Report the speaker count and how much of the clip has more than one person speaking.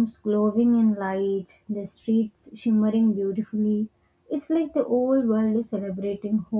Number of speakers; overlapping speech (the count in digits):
1, no overlap